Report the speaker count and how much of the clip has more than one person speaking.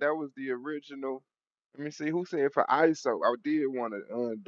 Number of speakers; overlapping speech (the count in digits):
1, no overlap